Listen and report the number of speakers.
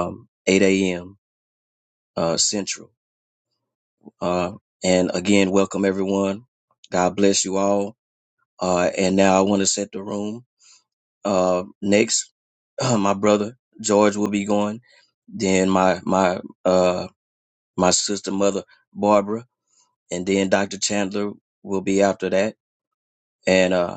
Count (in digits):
1